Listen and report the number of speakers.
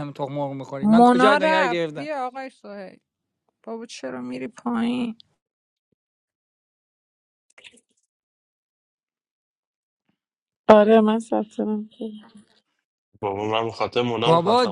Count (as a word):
four